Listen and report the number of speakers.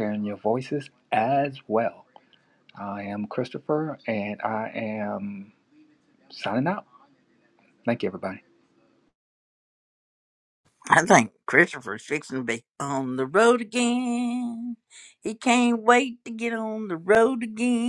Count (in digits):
2